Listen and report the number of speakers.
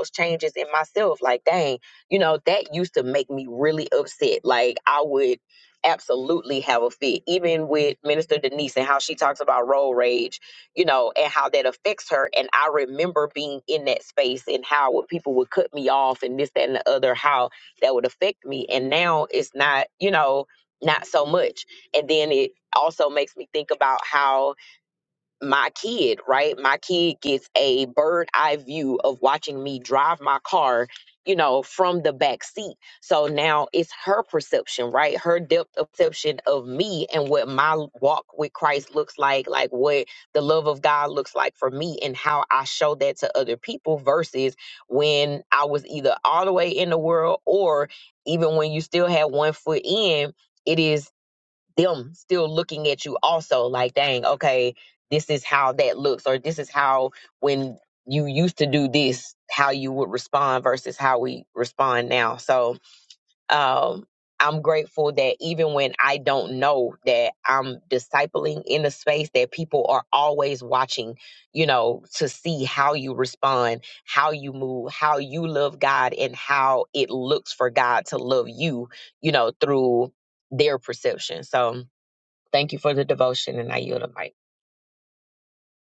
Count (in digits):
1